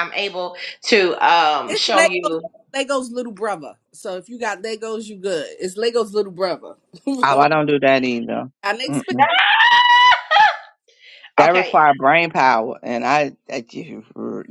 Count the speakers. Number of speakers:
3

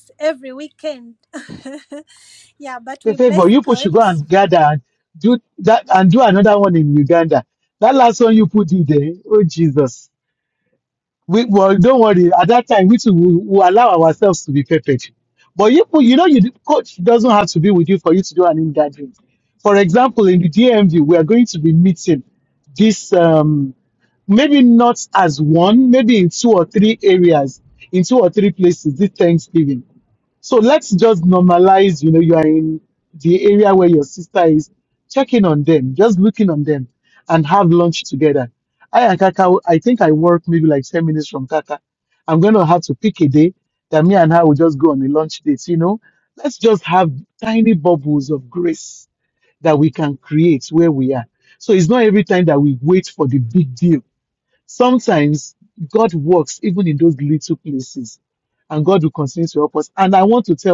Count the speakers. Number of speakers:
2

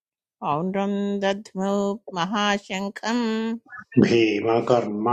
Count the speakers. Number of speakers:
2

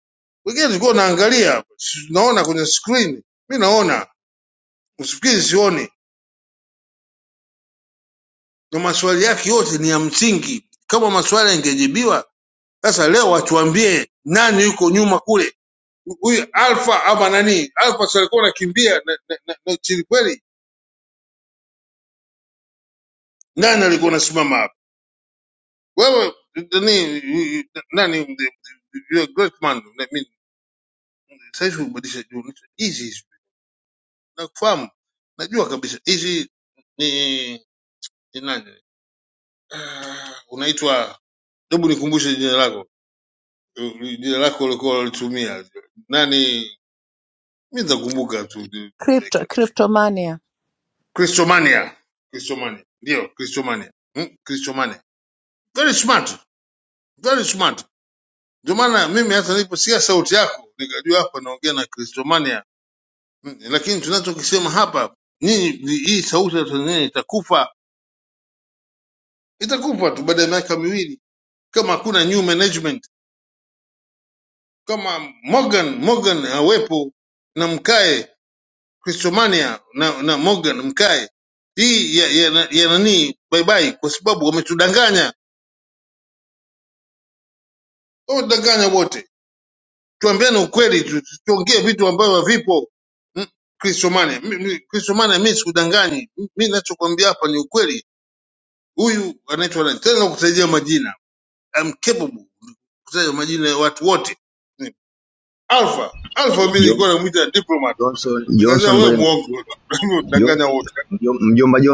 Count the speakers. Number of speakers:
3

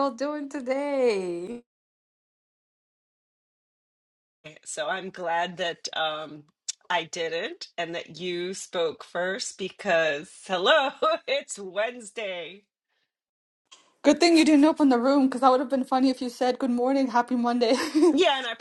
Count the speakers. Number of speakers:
3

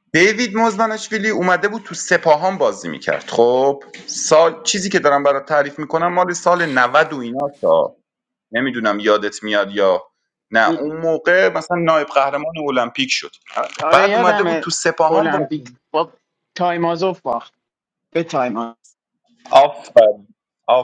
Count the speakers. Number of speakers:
2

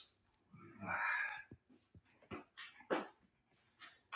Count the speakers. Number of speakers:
0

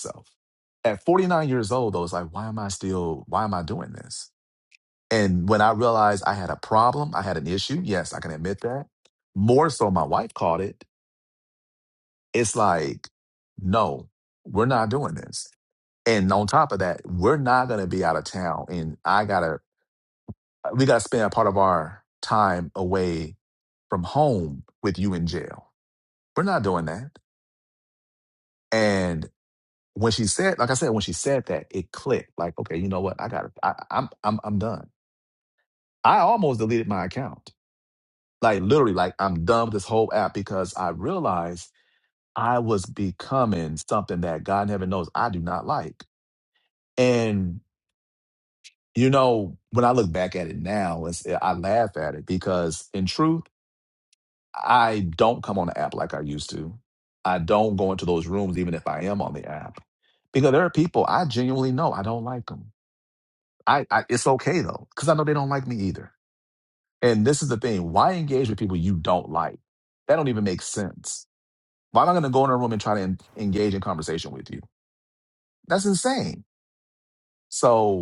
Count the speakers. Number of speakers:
1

